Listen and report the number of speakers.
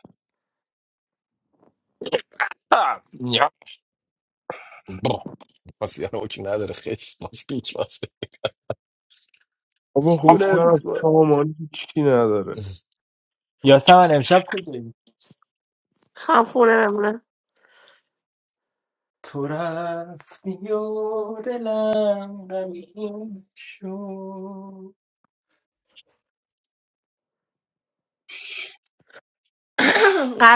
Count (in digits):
4